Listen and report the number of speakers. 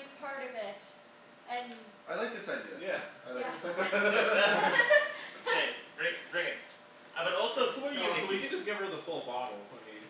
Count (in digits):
4